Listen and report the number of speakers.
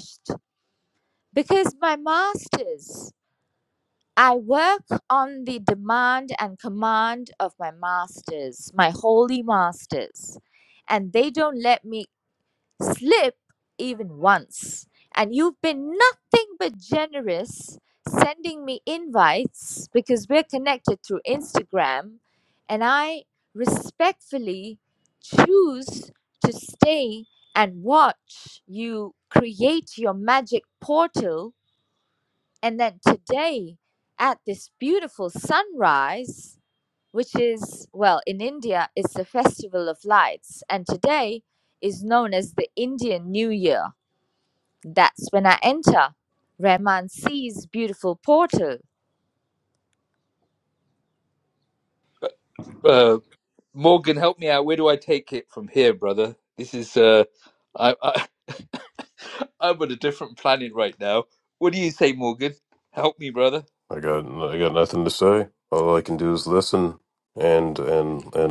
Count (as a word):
three